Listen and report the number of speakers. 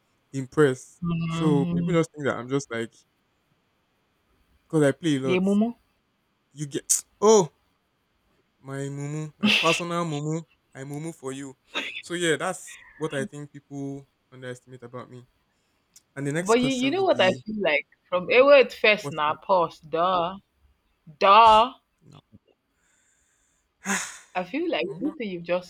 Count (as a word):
two